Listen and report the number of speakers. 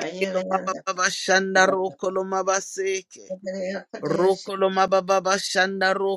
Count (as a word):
two